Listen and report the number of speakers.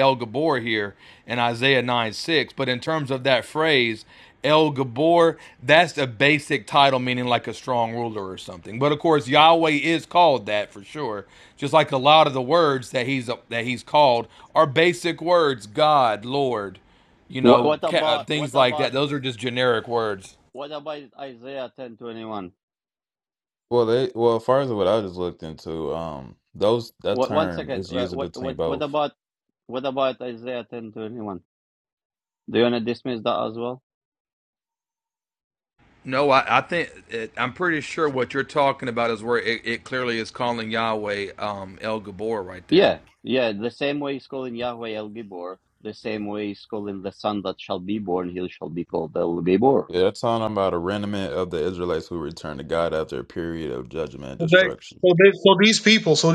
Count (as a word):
four